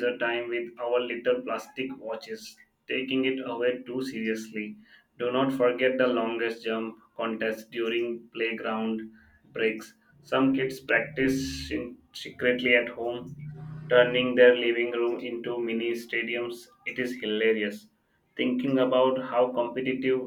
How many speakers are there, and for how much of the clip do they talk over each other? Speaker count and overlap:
1, no overlap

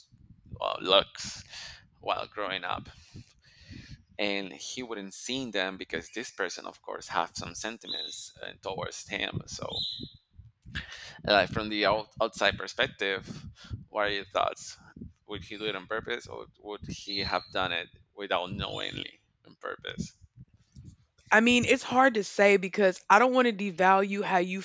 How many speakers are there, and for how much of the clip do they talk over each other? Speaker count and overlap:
2, no overlap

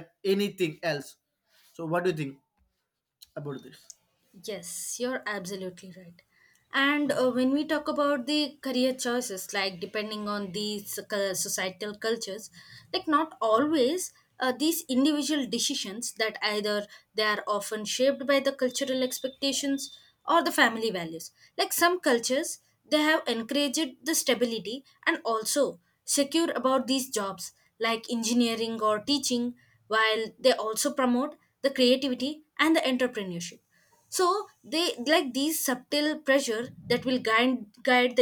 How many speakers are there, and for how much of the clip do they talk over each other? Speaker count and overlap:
2, no overlap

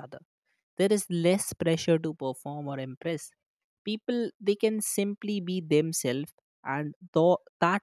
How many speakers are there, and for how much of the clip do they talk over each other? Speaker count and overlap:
1, no overlap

